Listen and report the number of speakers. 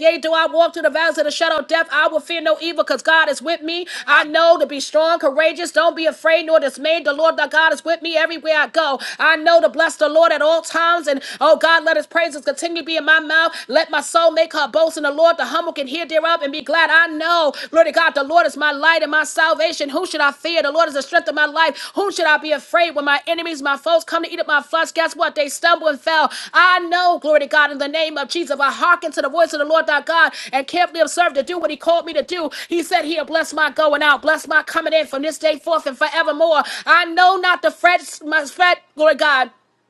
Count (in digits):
1